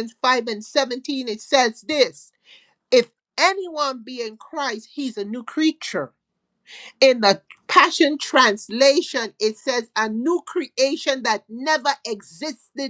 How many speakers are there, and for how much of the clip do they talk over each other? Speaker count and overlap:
1, no overlap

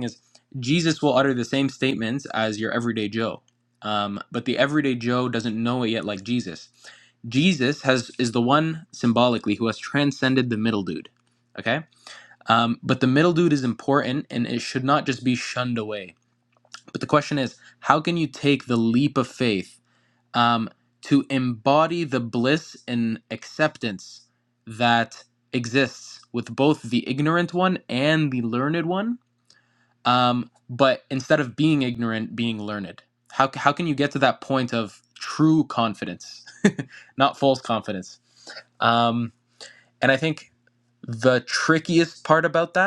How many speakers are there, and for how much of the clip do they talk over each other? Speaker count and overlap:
1, no overlap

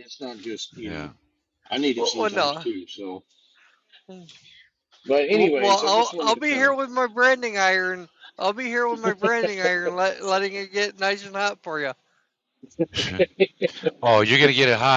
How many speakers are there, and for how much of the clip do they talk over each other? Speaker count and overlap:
3, about 16%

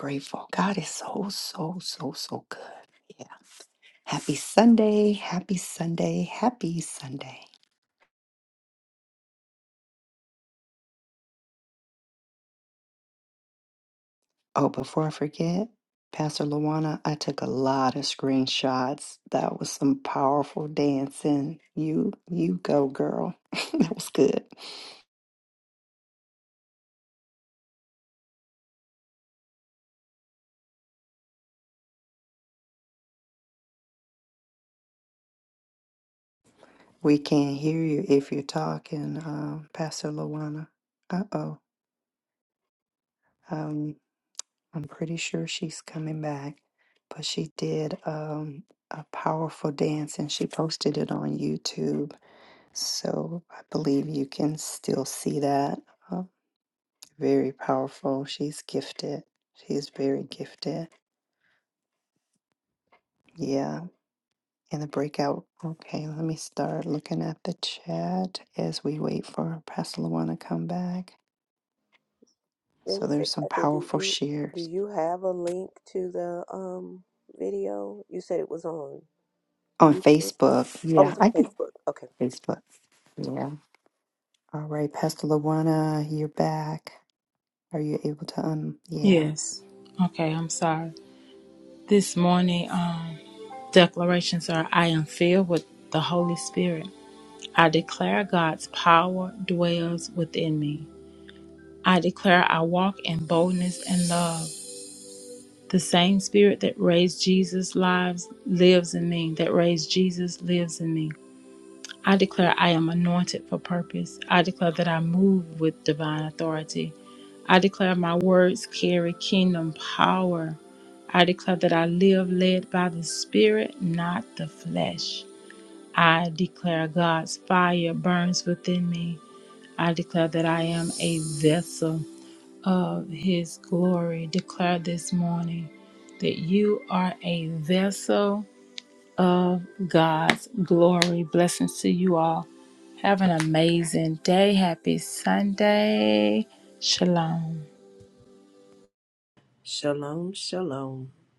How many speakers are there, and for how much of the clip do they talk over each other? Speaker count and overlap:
4, about 2%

